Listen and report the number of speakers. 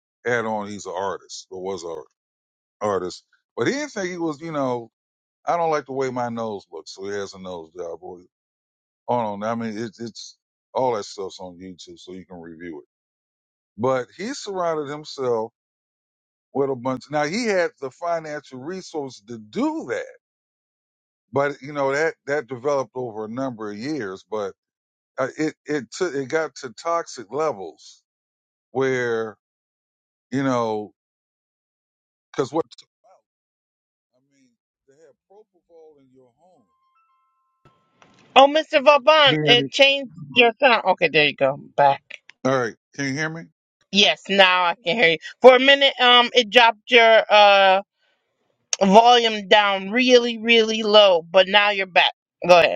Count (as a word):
two